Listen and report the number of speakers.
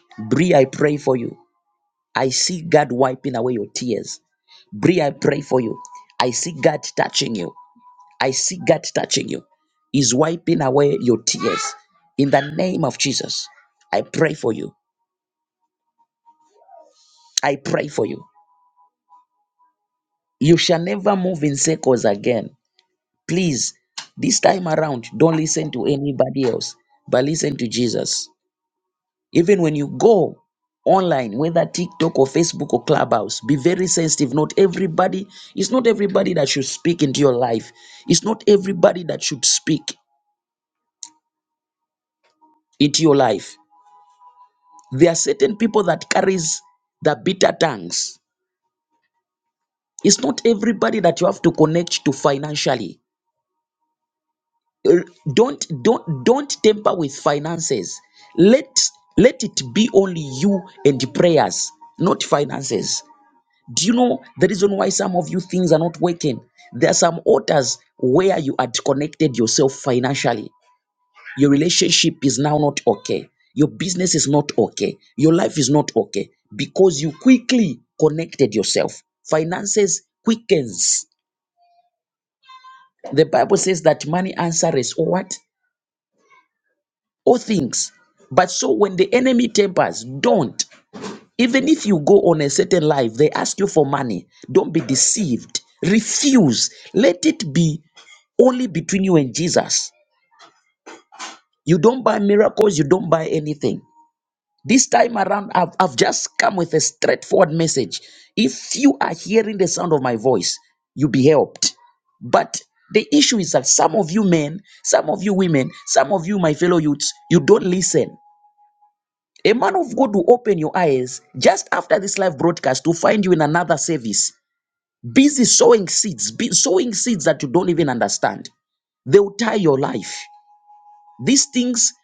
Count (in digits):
1